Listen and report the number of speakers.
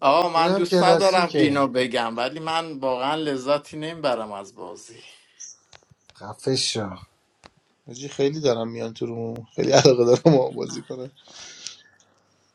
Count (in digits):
3